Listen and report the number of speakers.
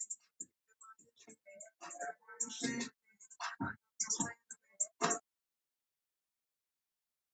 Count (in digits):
0